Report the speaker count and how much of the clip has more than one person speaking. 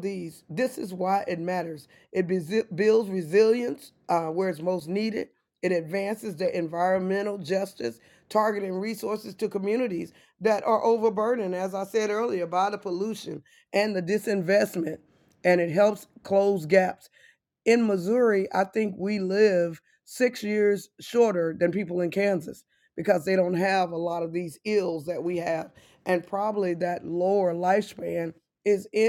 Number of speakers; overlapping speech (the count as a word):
one, no overlap